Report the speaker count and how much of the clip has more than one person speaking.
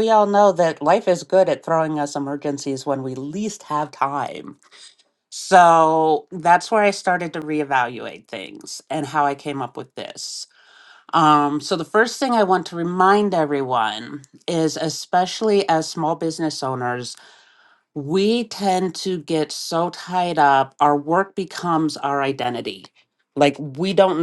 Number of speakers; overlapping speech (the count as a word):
one, no overlap